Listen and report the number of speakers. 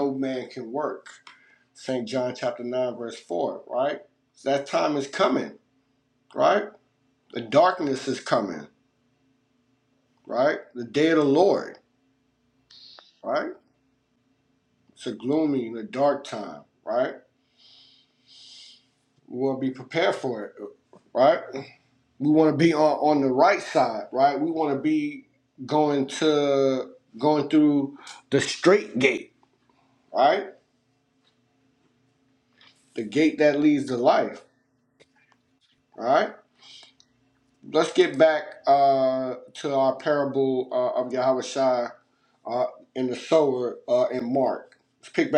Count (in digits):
1